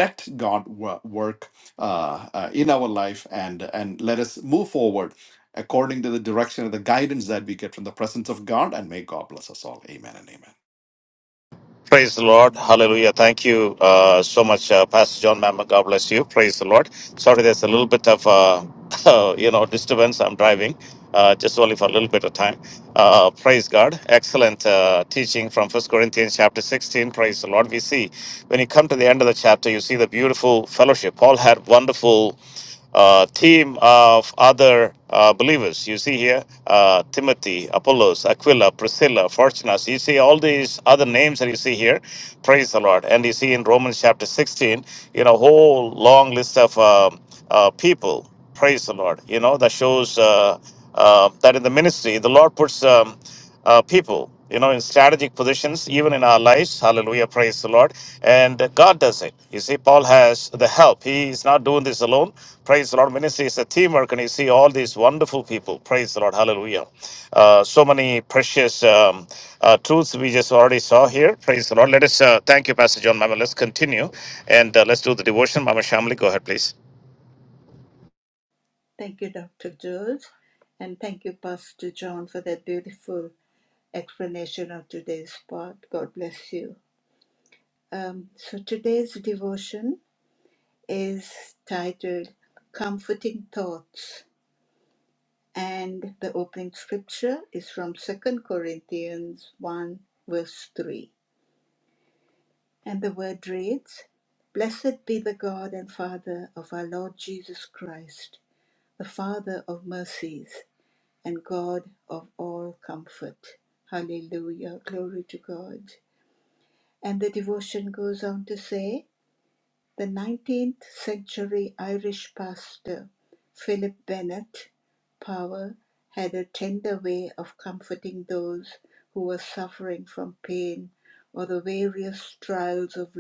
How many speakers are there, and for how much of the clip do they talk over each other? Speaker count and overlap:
3, no overlap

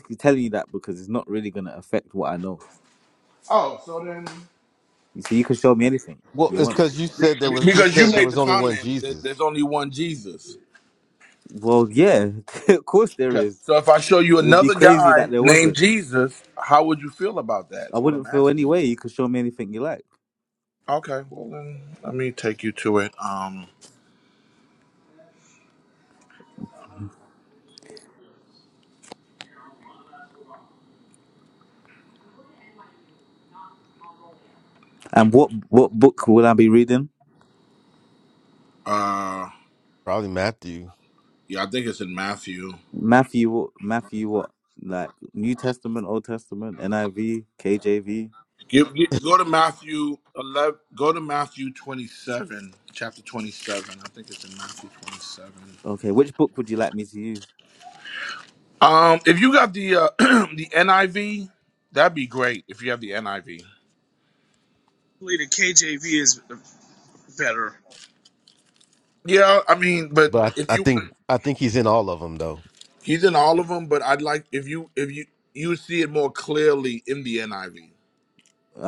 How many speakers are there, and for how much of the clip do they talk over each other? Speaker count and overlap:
4, about 6%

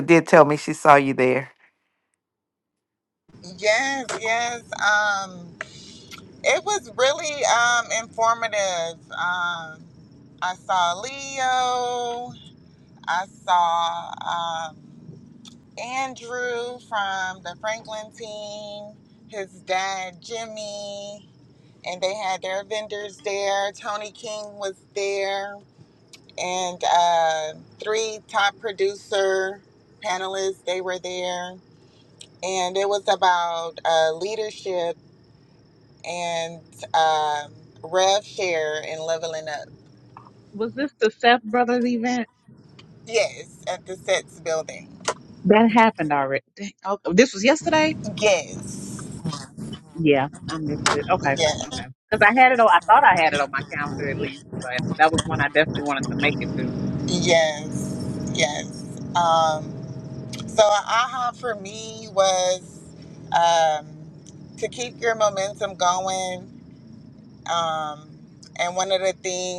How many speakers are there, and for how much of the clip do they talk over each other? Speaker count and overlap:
3, about 1%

